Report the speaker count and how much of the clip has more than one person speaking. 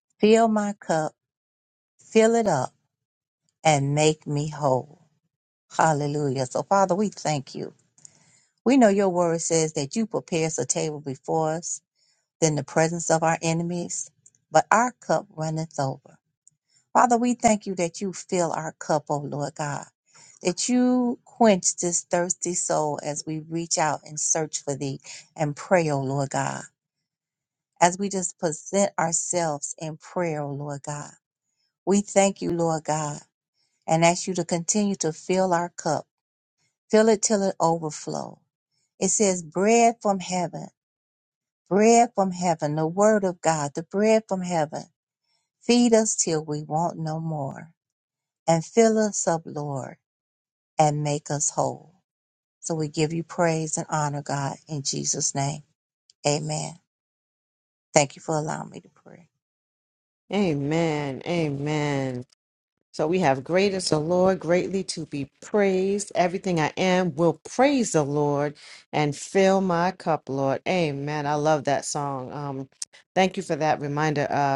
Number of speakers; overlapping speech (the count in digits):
2, no overlap